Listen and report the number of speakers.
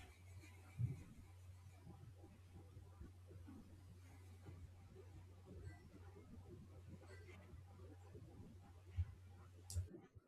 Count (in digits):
0